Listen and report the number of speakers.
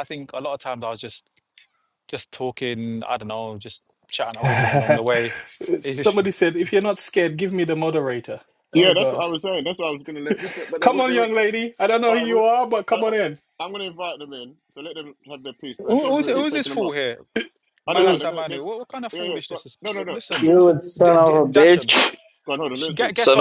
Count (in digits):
4